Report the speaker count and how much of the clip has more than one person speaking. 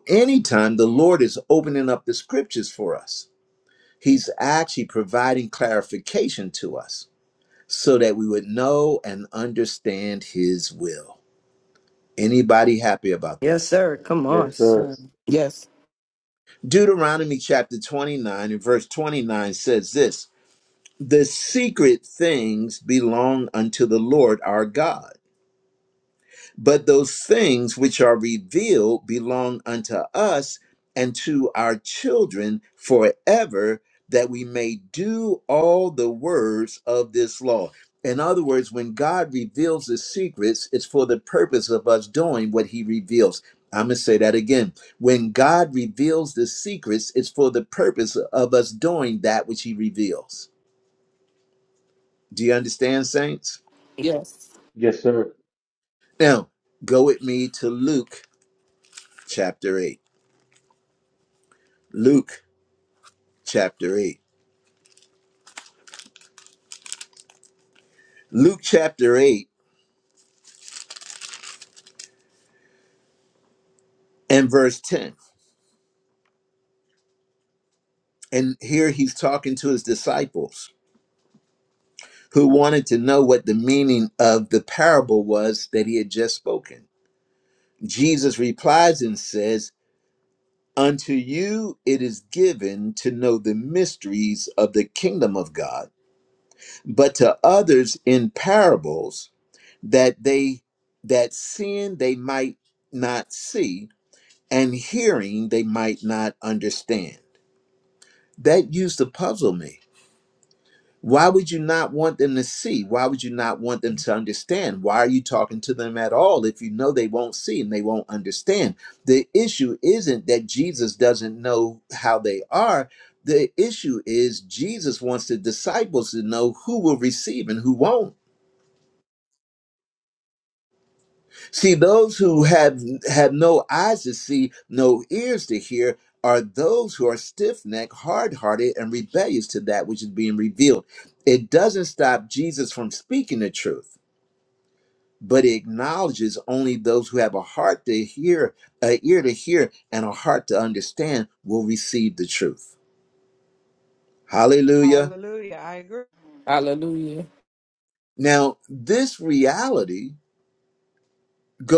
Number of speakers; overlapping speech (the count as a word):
five, about 1%